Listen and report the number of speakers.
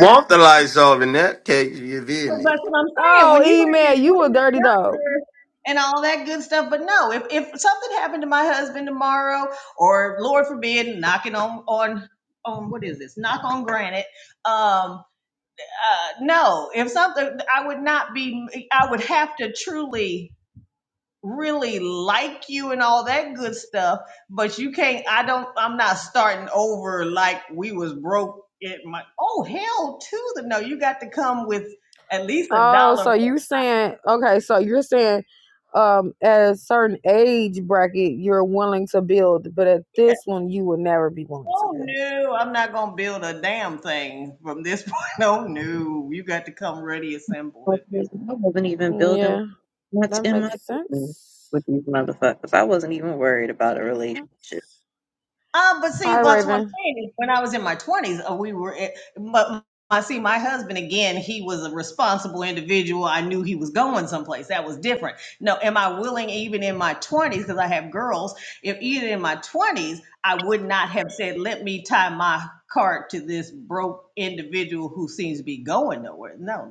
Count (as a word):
four